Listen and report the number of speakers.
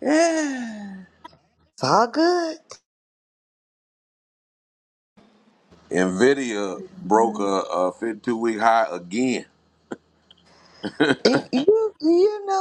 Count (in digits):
2